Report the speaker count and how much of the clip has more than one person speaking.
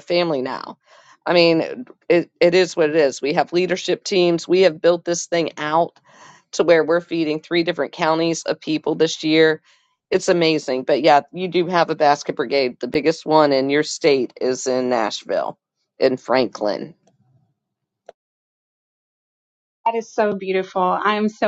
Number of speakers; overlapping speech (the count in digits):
2, no overlap